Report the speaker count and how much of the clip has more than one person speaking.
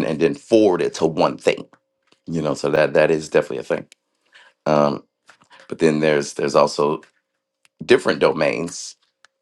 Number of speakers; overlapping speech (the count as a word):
one, no overlap